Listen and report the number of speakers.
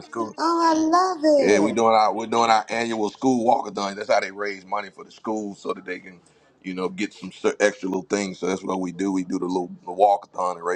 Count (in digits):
2